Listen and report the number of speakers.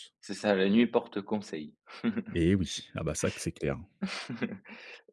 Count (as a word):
two